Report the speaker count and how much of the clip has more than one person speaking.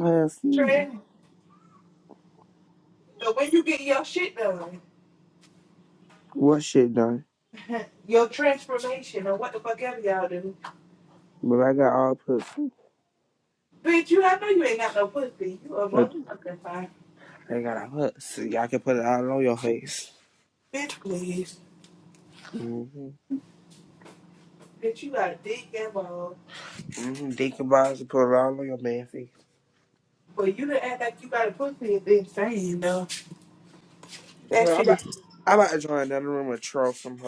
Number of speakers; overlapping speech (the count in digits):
2, about 2%